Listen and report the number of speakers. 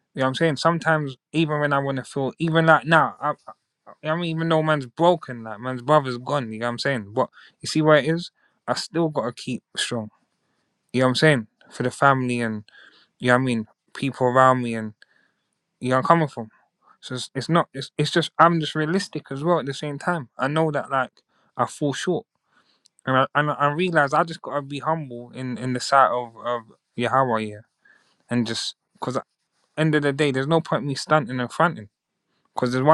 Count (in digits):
1